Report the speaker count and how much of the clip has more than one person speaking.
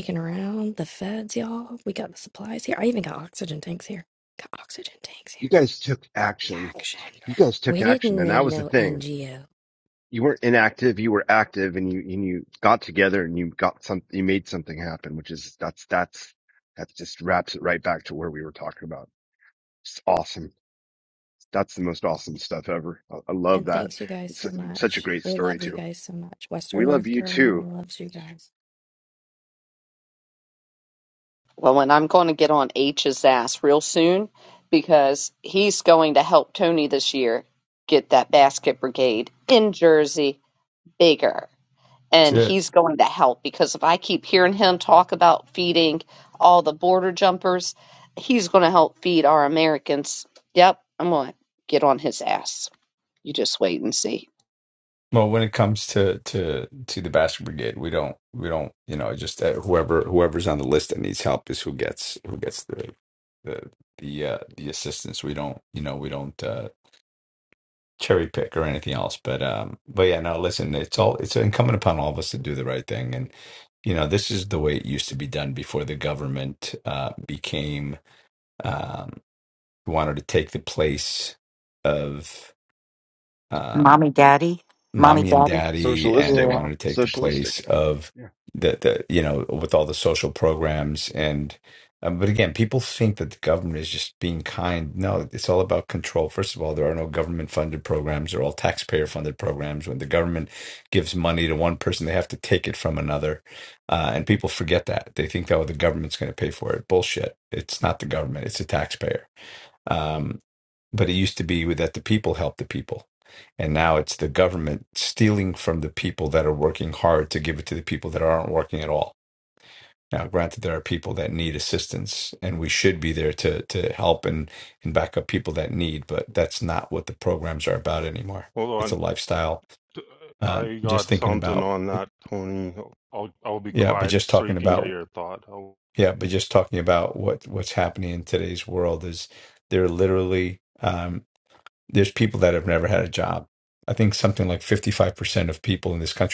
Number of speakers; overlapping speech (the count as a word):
six, about 6%